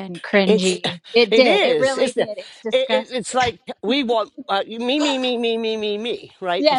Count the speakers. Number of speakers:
2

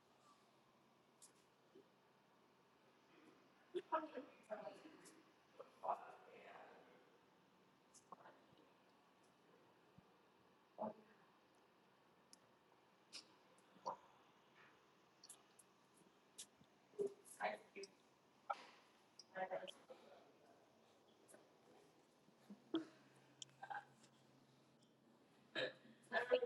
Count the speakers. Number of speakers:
0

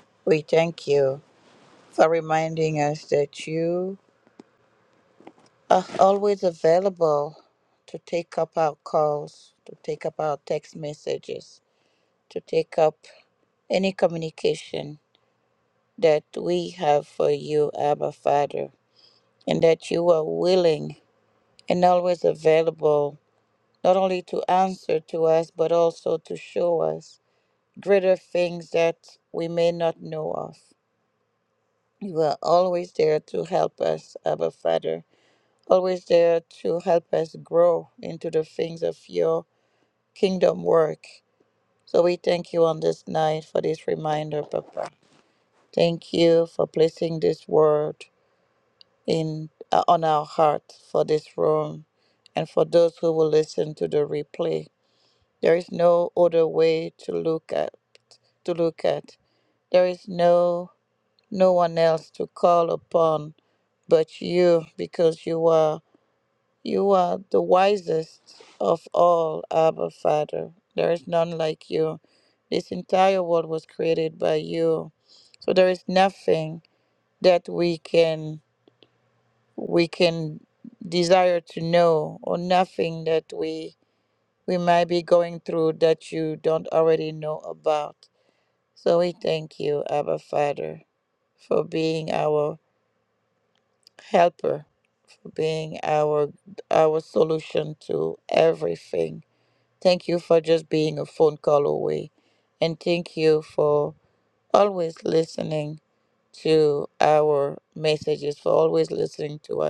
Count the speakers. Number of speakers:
1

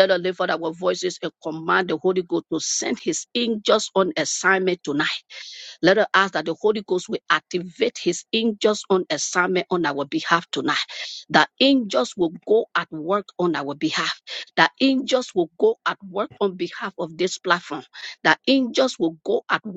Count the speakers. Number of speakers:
1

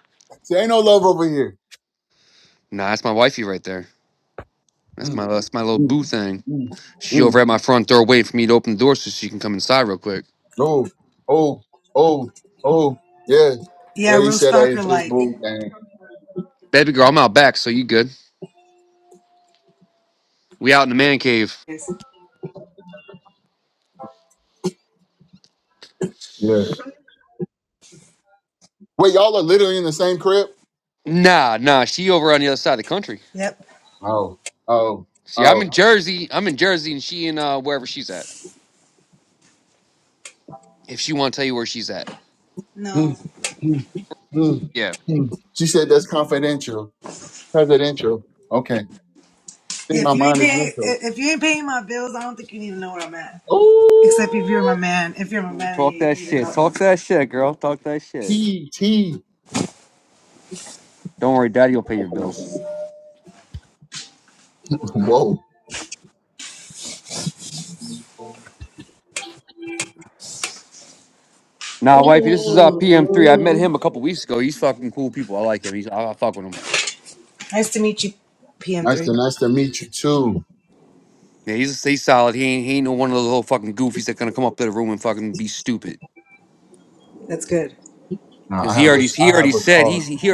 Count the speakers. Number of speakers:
3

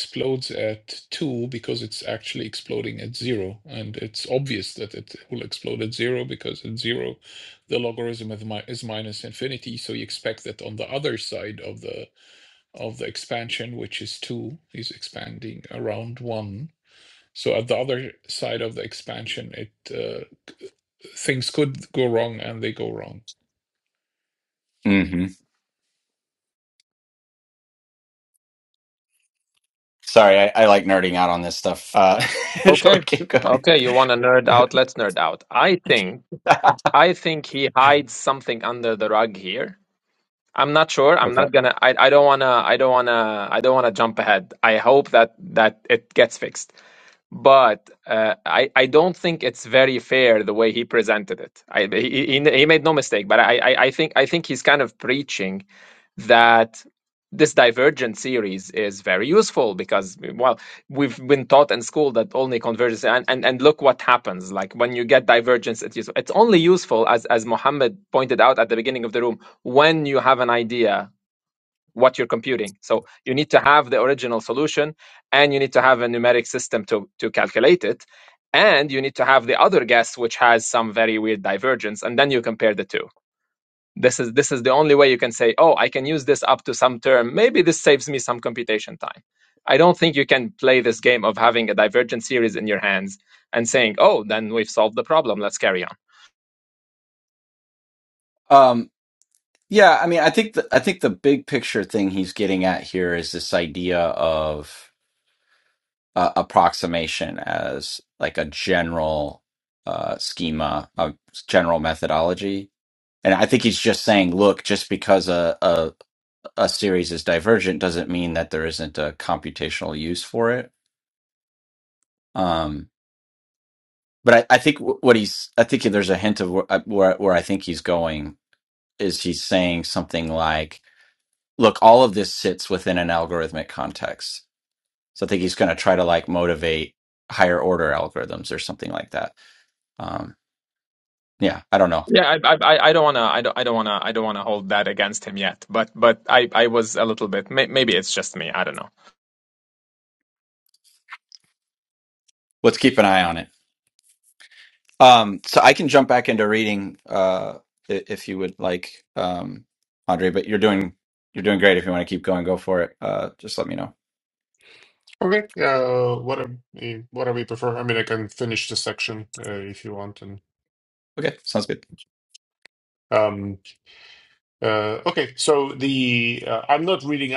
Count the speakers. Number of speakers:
4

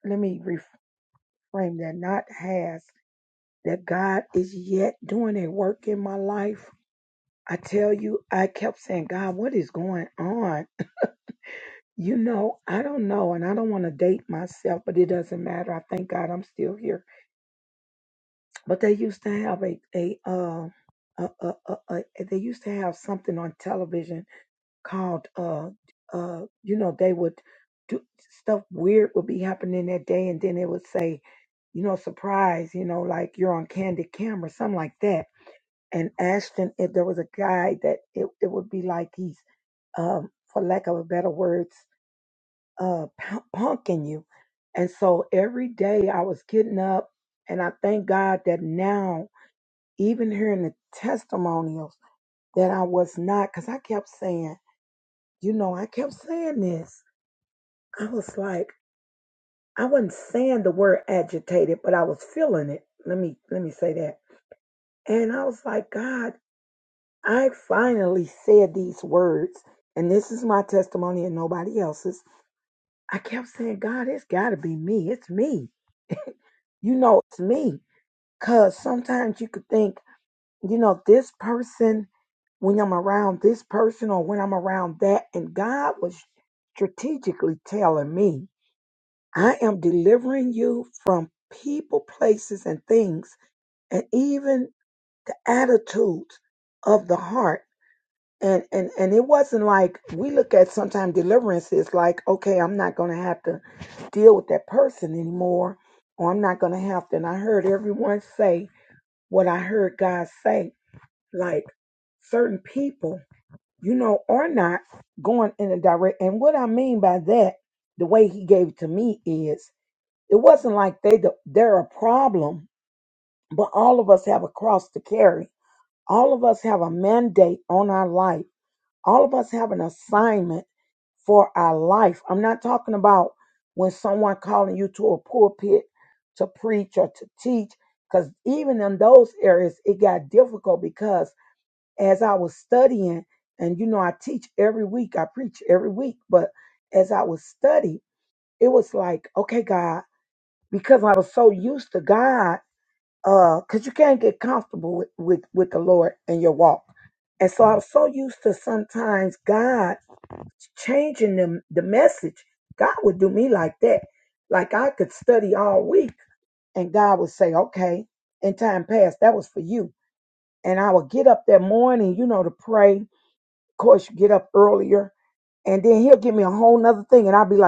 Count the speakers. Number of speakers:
1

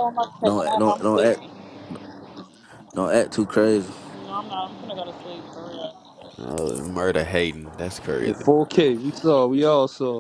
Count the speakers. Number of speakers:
4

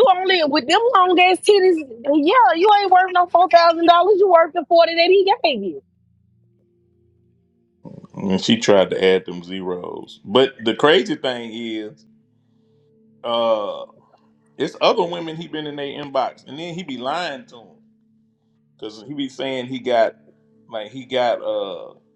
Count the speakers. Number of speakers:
2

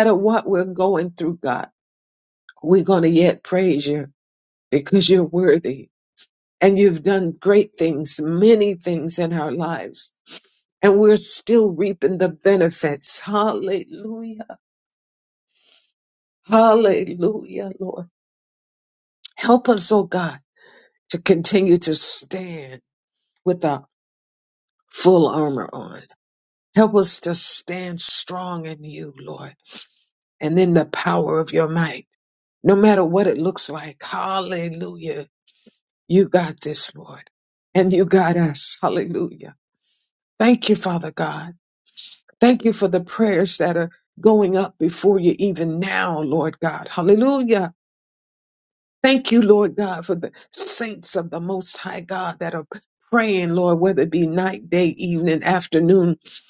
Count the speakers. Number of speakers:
1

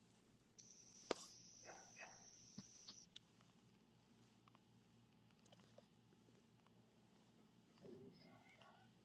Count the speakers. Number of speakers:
0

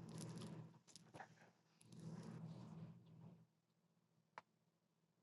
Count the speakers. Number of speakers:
0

